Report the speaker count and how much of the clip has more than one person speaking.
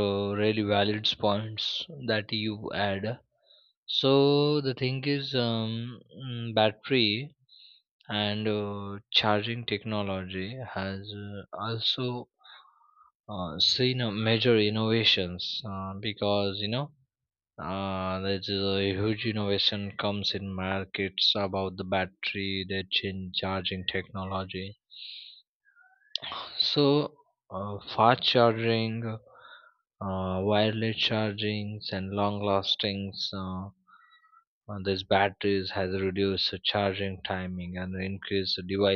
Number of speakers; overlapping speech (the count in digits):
1, no overlap